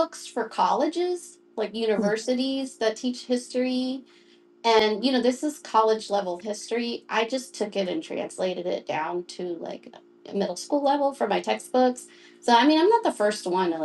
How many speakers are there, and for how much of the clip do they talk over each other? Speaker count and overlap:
one, no overlap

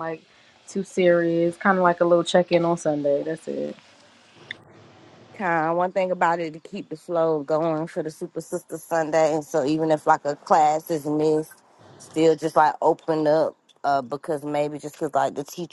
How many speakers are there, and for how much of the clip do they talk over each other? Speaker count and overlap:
two, no overlap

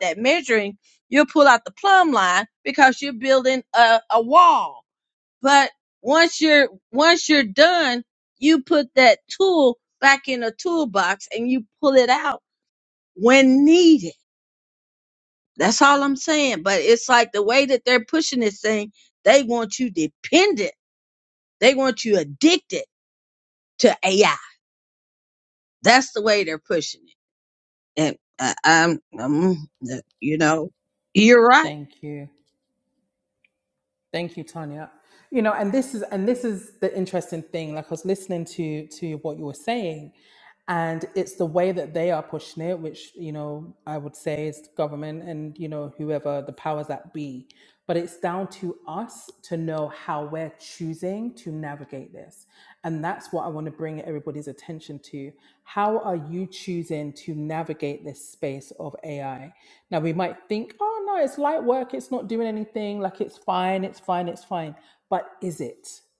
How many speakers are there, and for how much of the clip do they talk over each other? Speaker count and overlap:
two, under 1%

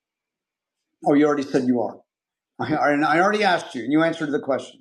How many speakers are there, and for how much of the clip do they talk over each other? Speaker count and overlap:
one, no overlap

